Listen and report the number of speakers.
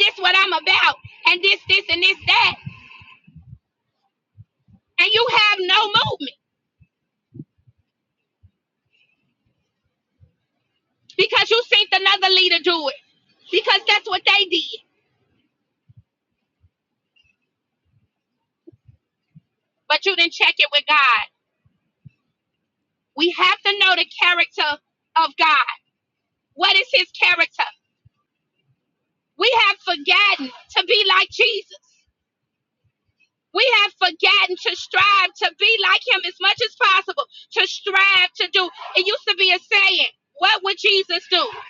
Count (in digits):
1